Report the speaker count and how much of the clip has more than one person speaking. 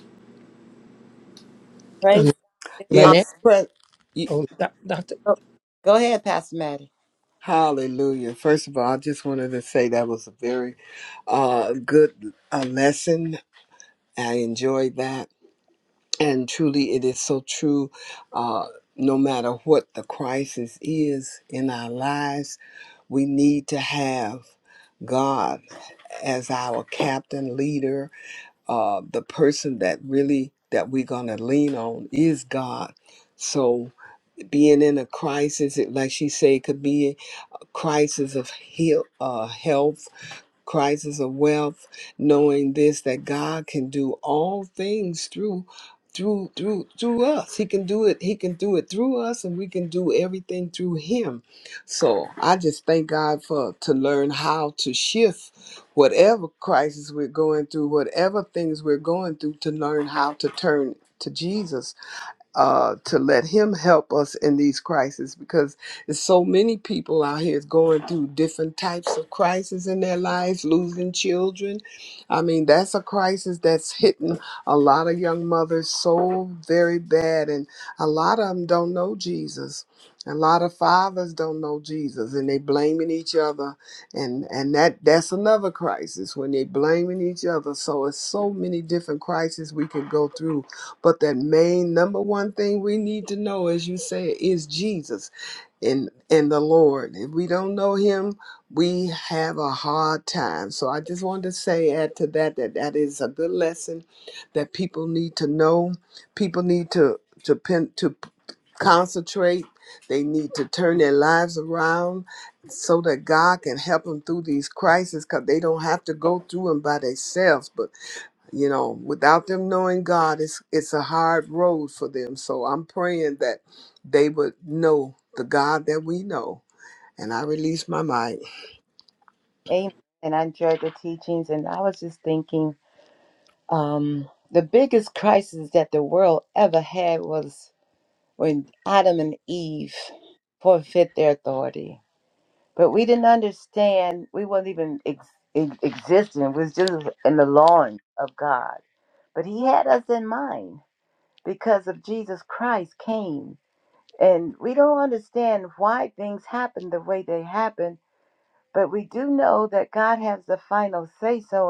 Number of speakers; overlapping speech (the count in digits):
3, under 1%